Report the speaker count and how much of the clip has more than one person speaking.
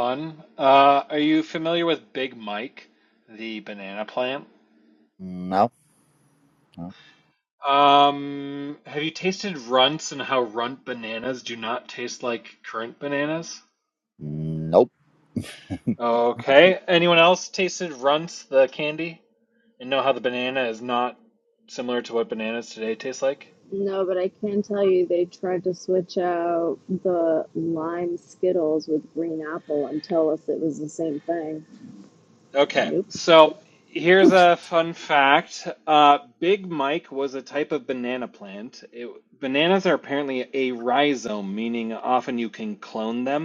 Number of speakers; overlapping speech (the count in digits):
3, about 1%